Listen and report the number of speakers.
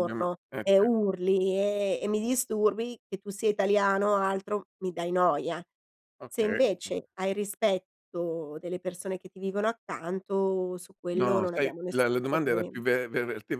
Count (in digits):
2